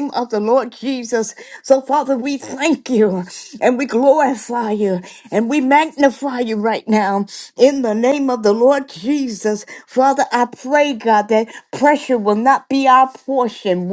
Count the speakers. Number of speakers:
1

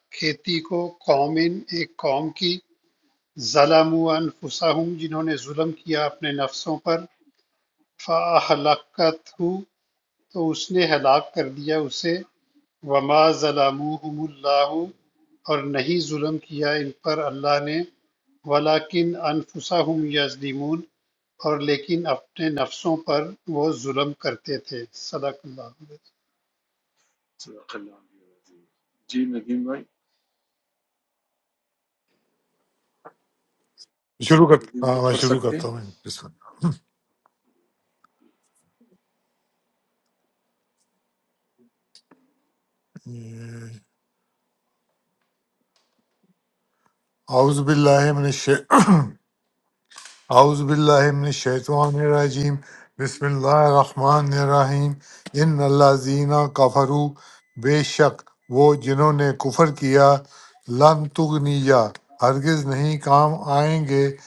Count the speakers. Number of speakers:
3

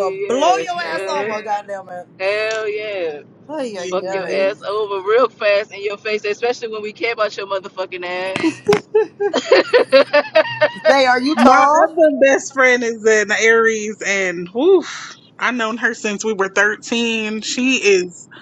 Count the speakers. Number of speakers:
3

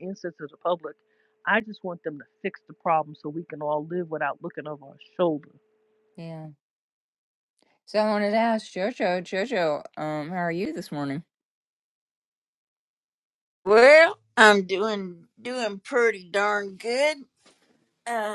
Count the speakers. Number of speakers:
3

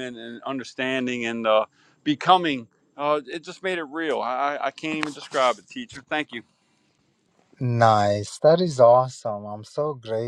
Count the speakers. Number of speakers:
2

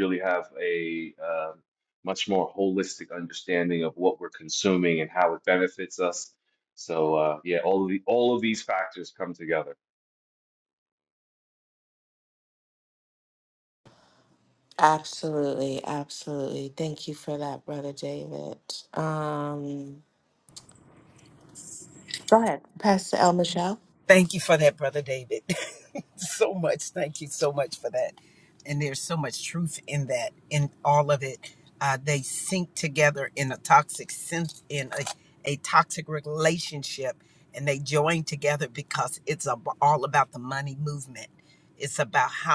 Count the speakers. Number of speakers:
3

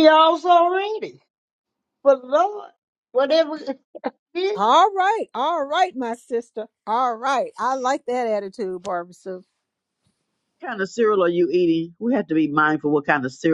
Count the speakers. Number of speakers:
3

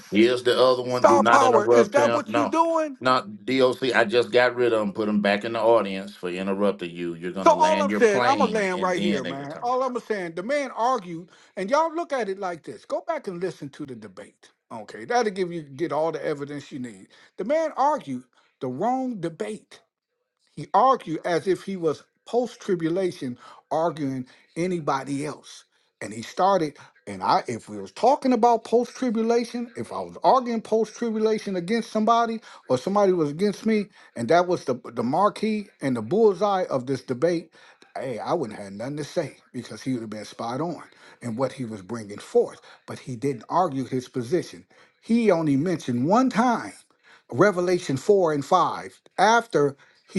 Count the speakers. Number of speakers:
2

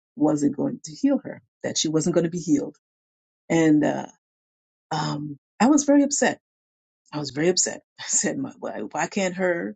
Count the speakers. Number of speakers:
1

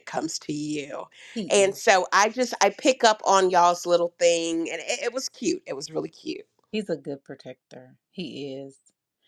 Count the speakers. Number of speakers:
2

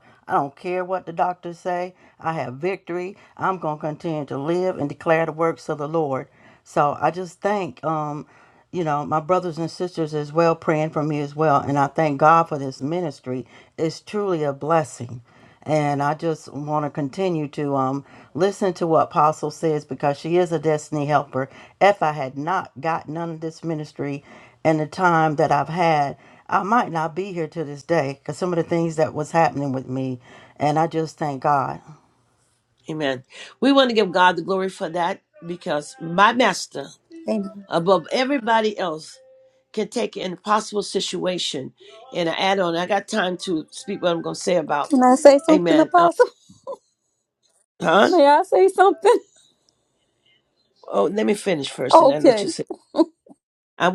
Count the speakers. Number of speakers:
3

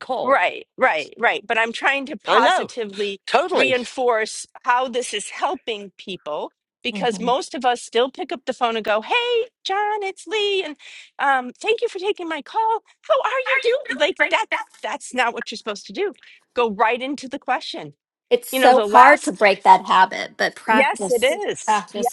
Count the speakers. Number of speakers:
3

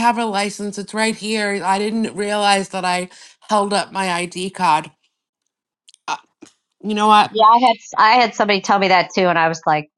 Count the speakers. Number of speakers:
2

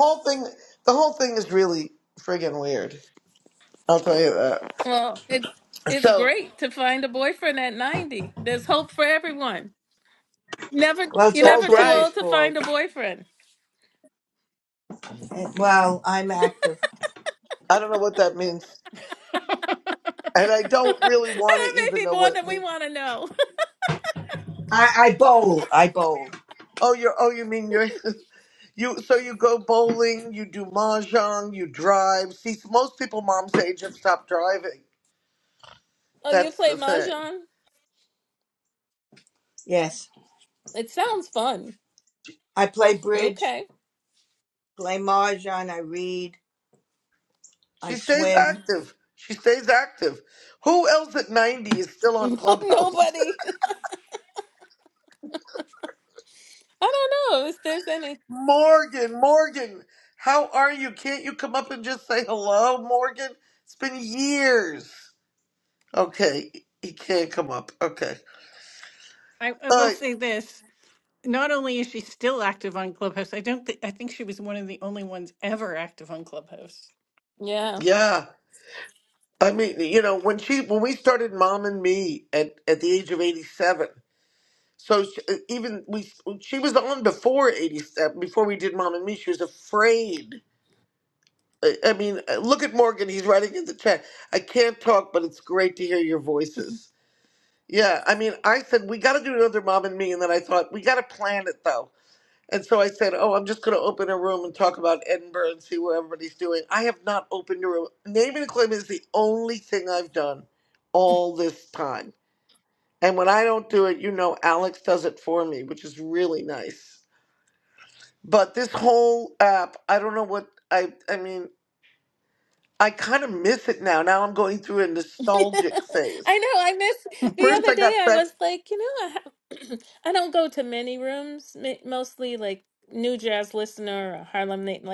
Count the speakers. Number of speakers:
4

